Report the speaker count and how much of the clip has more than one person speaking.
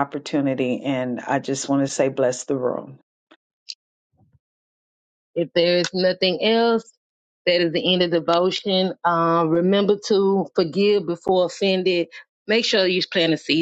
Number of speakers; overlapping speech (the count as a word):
two, no overlap